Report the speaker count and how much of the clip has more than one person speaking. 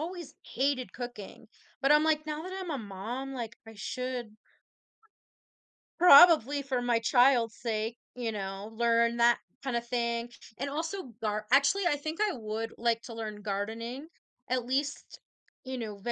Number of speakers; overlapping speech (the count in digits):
1, no overlap